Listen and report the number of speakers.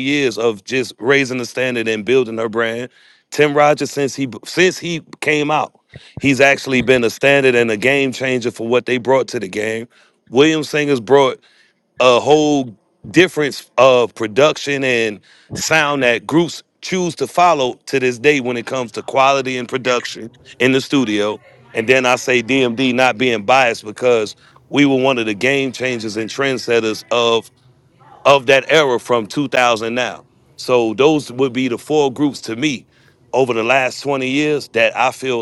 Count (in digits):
1